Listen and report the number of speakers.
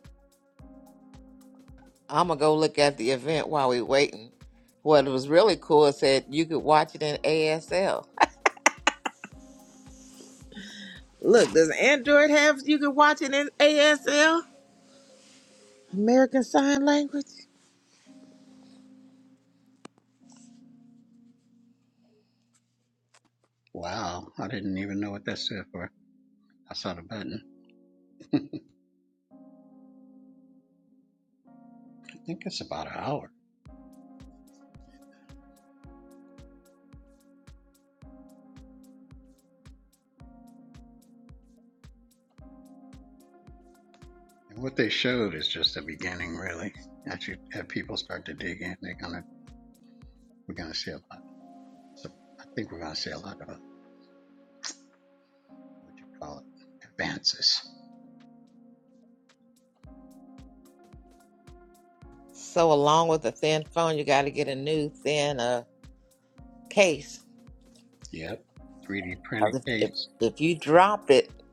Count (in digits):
2